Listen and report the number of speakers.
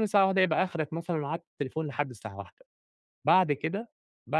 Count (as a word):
one